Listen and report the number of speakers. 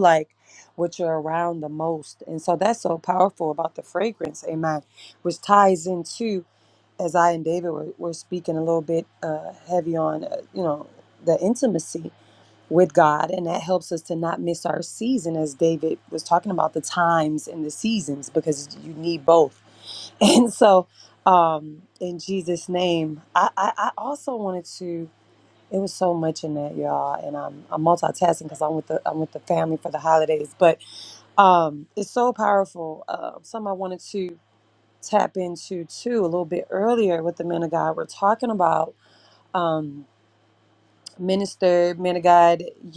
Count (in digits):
1